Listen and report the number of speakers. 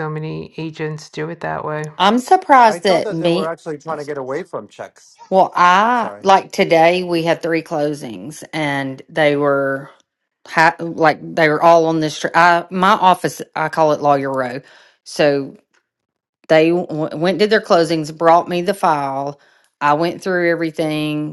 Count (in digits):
3